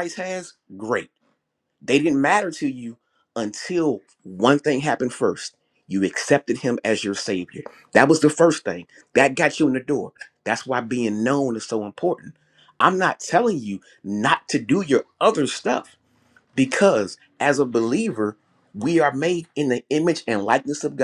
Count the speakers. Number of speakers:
one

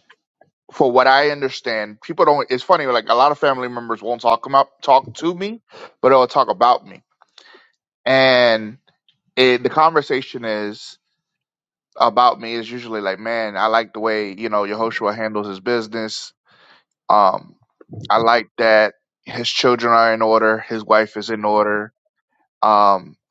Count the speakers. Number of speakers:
one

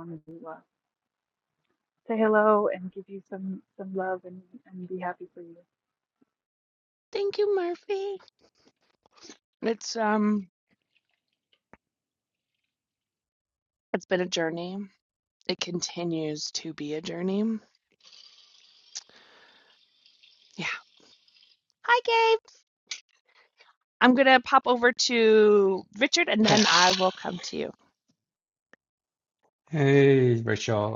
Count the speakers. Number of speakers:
three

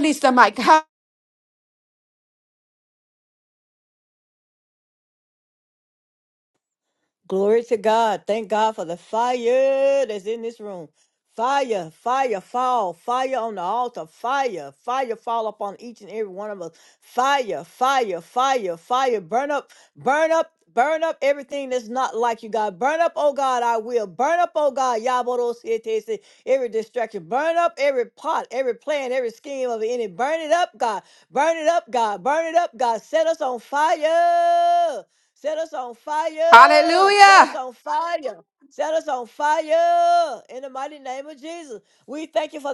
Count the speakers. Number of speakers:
two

